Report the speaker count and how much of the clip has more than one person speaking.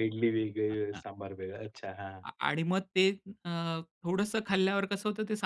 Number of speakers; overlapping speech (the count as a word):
two, about 7%